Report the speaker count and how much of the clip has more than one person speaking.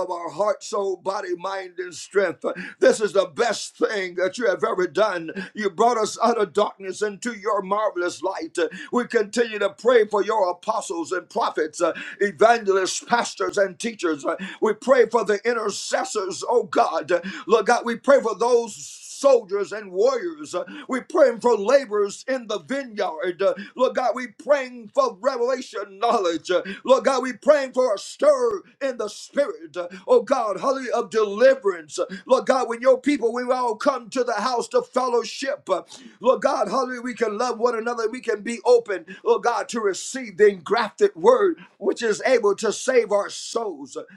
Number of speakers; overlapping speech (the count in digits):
1, no overlap